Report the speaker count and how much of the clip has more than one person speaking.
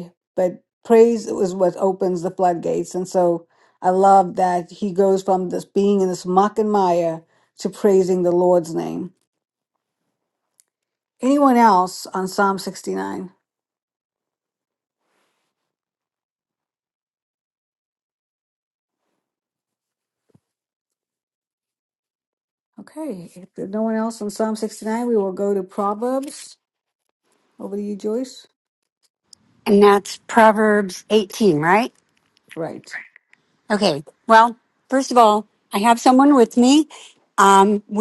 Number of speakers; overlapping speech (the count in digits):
2, no overlap